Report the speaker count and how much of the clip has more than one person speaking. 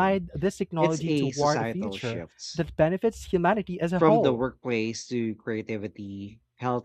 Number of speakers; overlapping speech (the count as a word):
two, about 29%